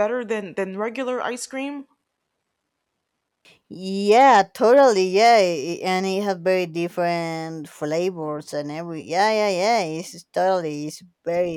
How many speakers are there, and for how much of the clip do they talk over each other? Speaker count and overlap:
2, no overlap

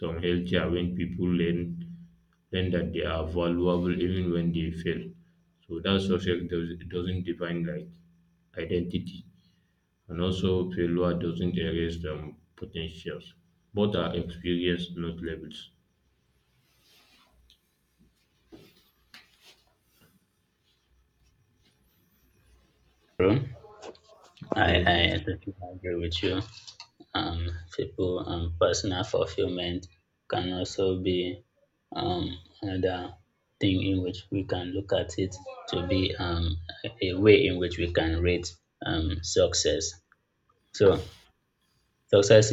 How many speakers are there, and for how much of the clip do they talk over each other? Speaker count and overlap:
2, about 1%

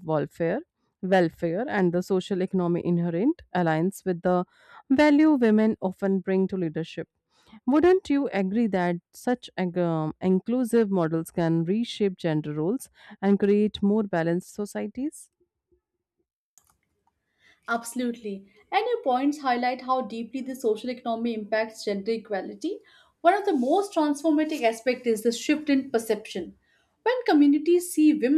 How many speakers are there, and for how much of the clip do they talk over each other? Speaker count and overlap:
2, no overlap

